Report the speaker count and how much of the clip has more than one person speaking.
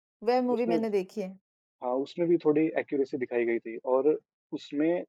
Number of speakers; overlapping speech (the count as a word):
two, about 7%